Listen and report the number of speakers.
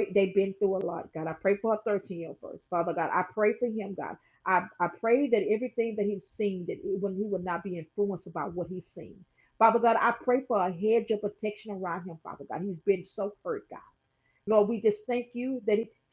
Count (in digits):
1